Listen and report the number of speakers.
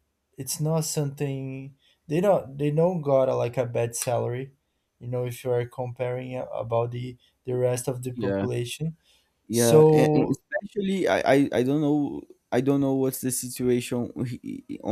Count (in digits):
2